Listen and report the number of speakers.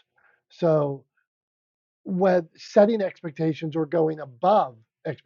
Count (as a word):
one